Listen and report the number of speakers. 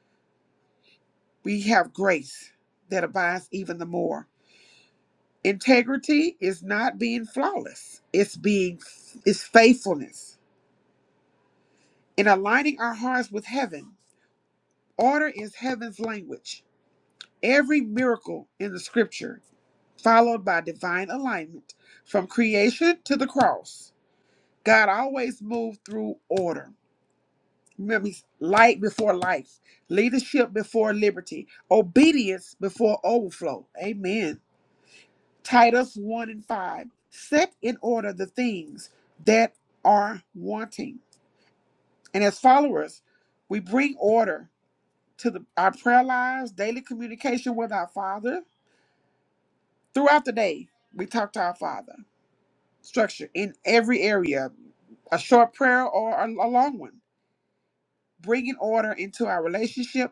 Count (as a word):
one